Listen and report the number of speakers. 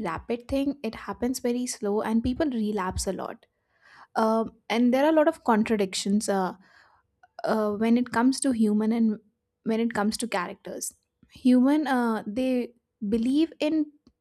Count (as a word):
one